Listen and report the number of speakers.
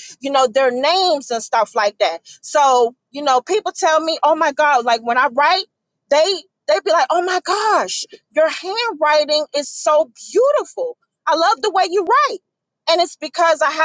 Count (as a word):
one